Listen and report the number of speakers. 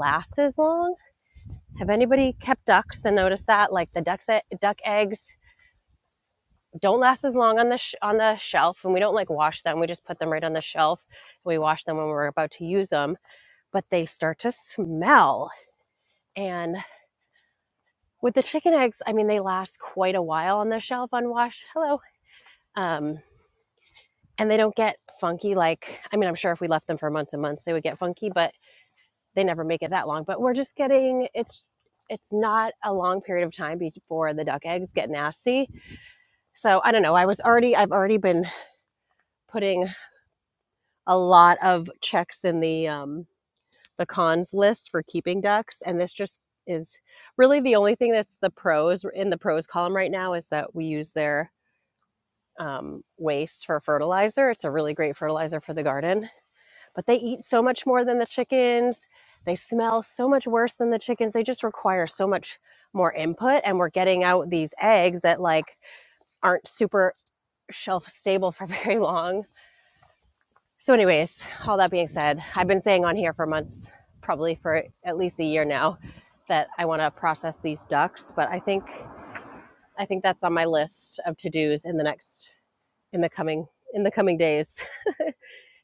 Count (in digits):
1